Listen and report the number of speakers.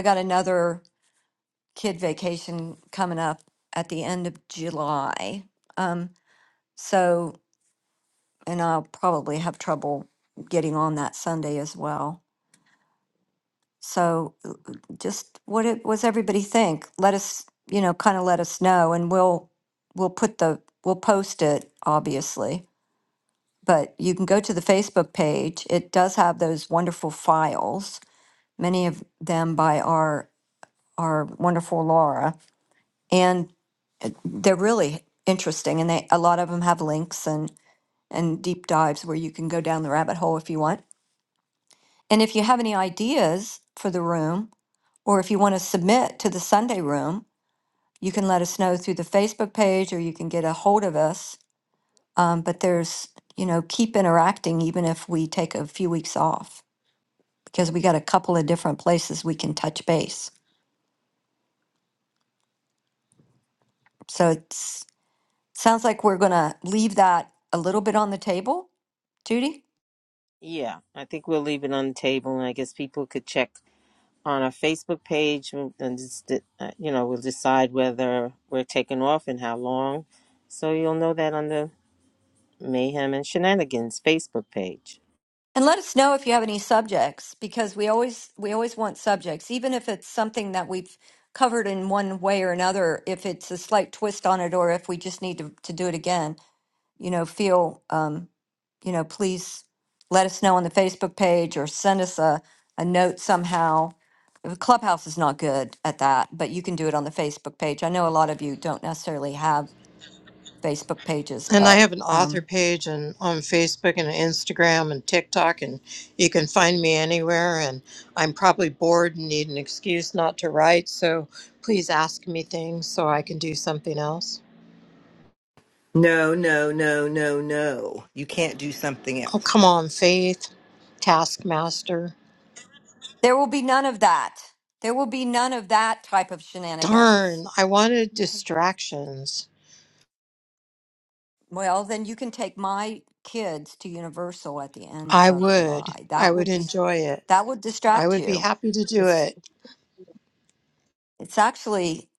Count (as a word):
four